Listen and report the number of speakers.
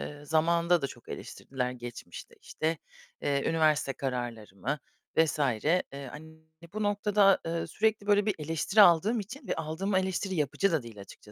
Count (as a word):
one